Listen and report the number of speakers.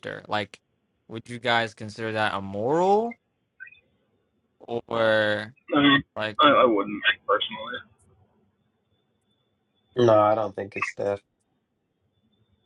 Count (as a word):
three